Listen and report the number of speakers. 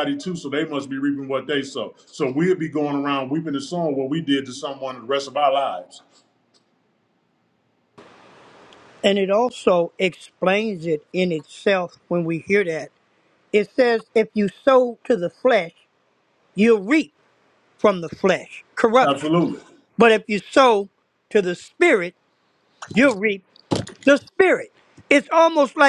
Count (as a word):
two